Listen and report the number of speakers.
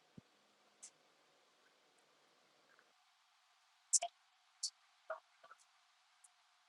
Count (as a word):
zero